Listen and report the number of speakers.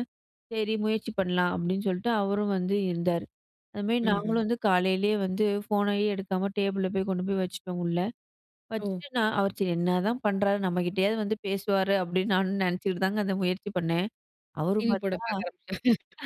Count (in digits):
2